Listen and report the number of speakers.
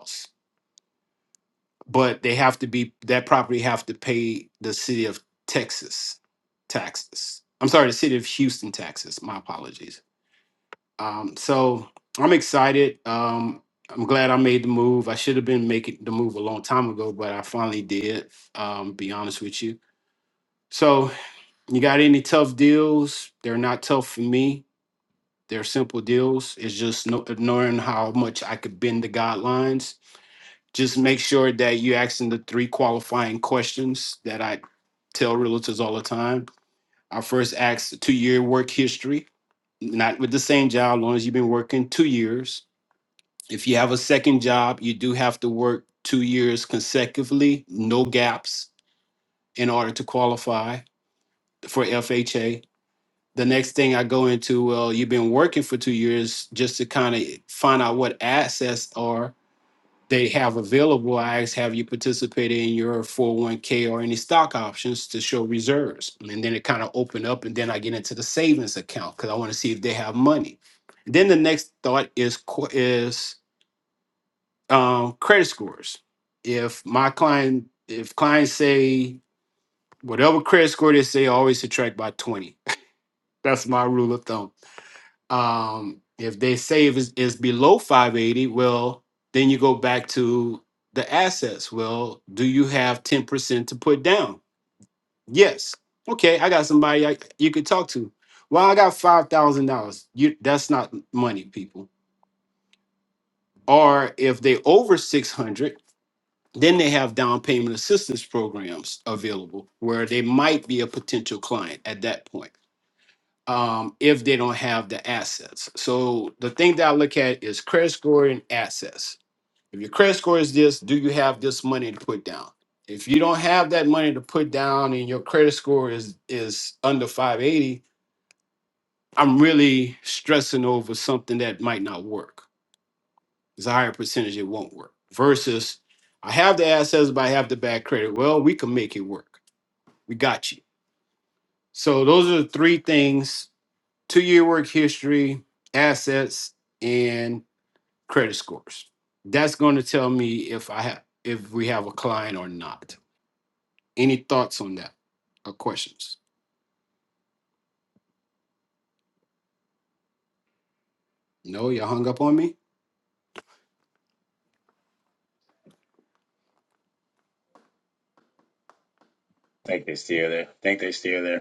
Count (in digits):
2